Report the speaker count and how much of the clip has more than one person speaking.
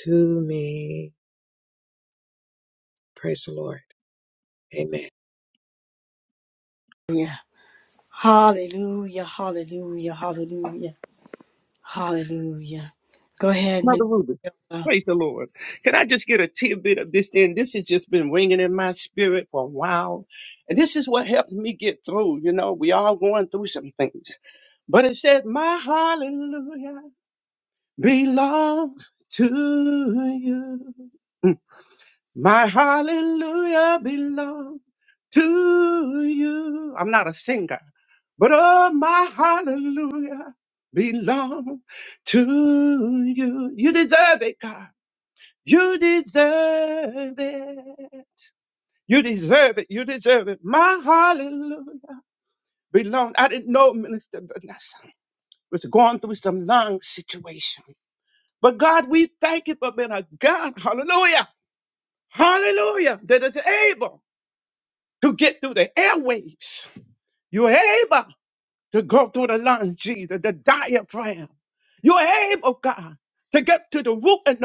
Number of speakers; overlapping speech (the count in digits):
3, under 1%